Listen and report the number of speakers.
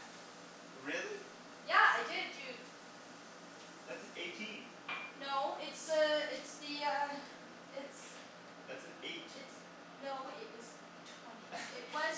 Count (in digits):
2